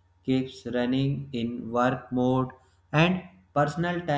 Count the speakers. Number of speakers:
1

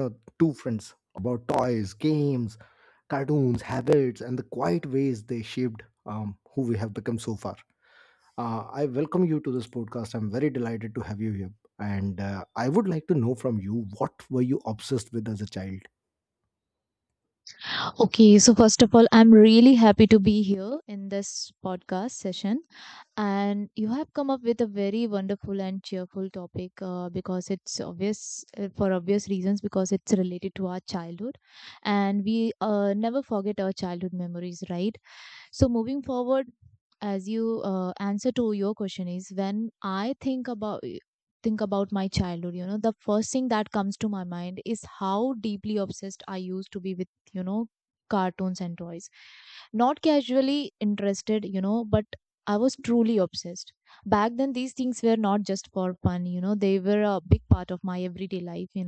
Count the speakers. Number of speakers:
2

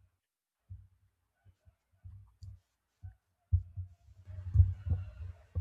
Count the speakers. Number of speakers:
0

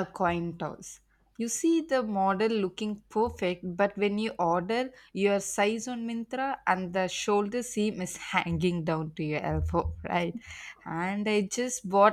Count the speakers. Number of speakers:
1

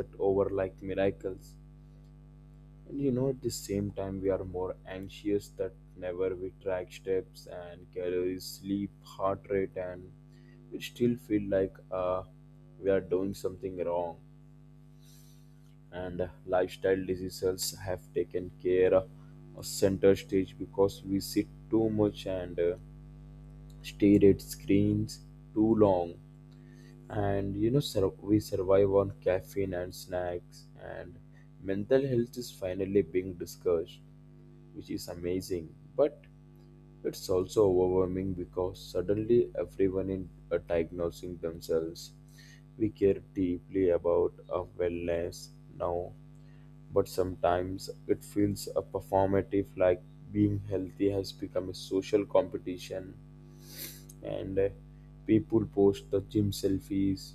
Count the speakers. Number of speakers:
1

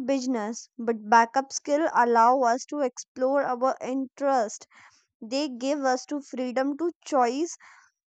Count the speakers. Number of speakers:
1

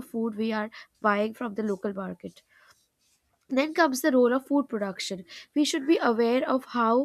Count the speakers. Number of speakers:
1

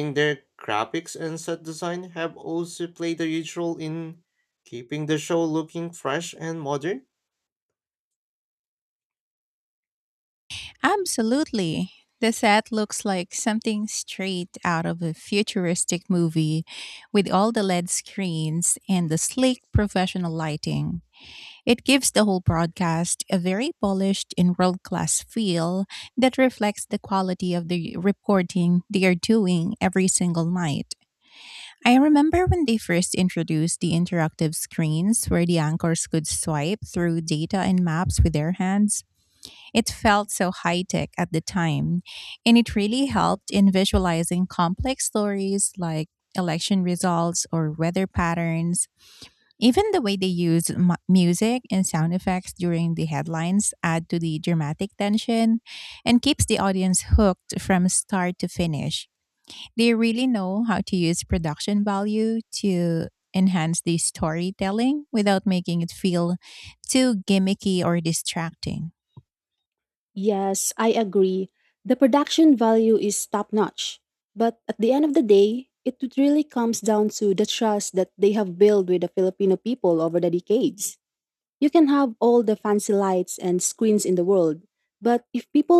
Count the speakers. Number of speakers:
3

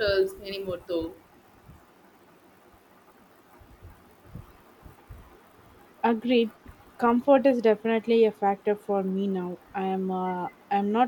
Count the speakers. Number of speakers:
2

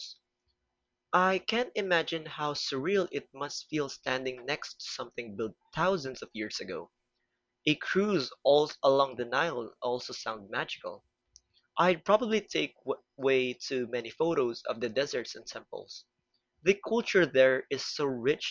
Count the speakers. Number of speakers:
1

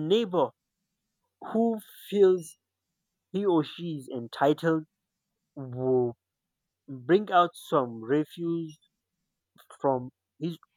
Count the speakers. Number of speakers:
1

